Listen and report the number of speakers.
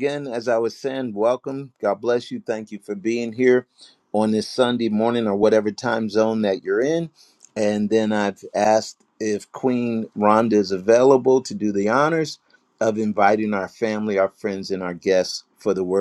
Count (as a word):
one